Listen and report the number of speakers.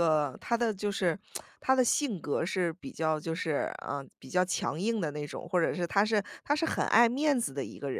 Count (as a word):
one